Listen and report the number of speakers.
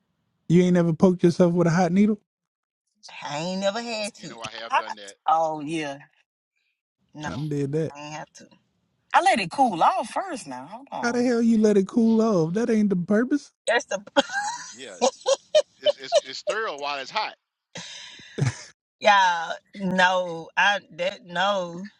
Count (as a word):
four